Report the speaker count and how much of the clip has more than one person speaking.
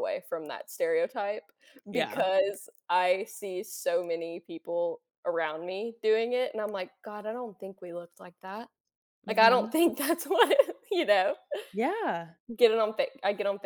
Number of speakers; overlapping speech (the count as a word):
two, about 5%